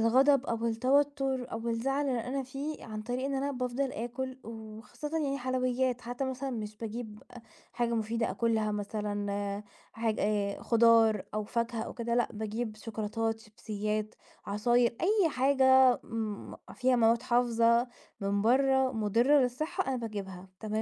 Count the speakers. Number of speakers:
one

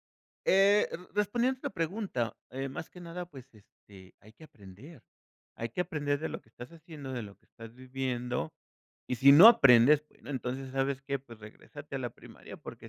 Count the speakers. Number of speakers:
one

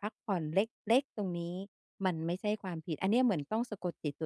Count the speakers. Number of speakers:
one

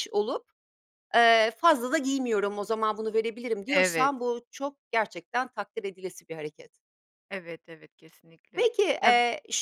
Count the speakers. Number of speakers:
two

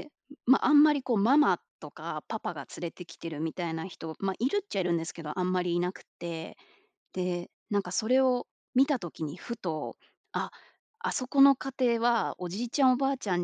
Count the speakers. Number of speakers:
one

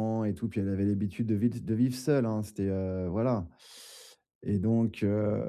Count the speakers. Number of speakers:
one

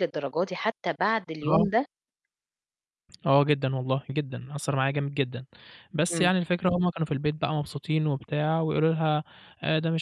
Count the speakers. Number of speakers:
two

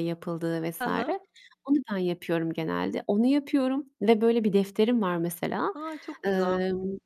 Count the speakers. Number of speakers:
two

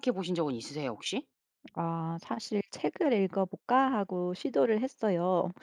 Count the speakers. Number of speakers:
two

